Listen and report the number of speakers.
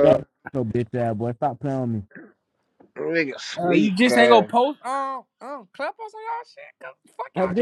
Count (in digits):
3